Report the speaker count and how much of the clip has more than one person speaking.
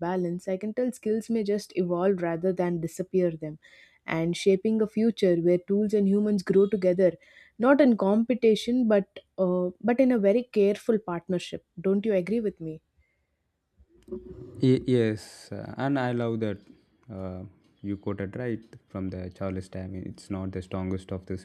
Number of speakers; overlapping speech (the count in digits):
2, no overlap